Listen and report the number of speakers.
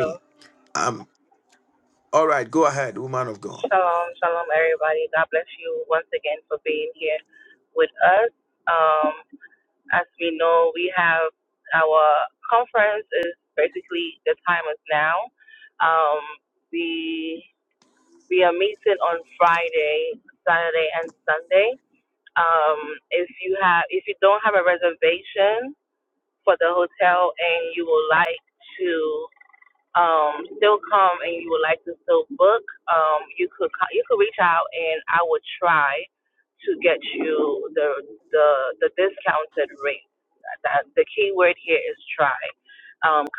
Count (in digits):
2